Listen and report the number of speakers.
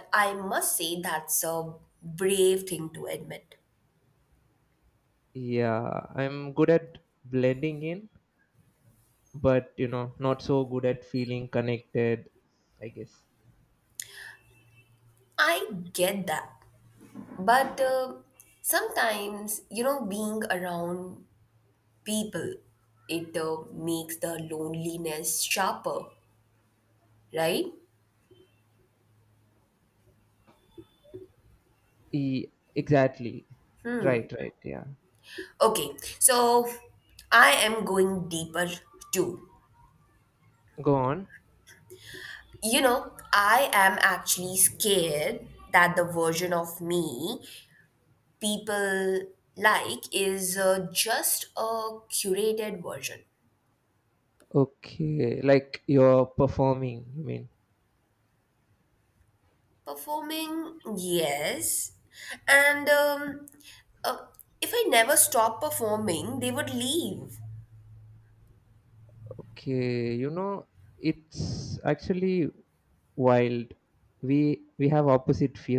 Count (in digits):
2